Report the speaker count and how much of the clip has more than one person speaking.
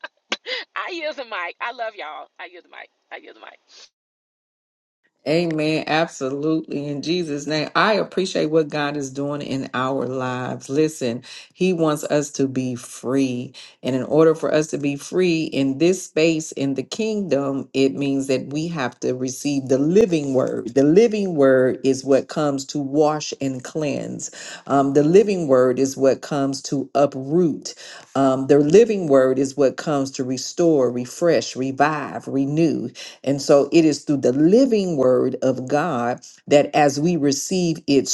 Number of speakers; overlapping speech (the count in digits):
2, no overlap